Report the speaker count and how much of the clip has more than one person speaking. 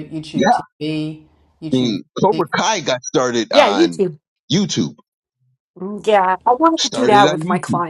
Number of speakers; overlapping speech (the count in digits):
3, about 25%